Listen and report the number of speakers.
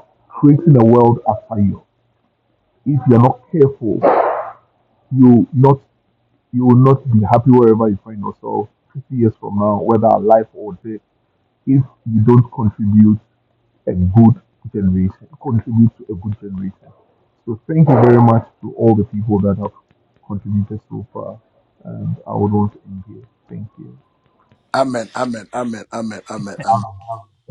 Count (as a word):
two